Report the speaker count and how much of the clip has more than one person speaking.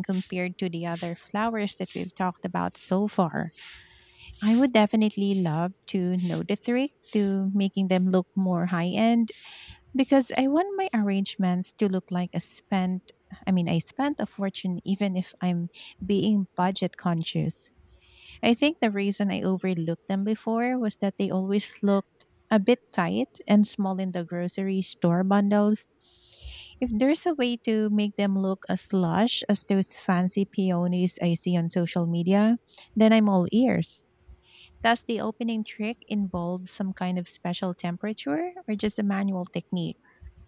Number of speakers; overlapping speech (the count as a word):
one, no overlap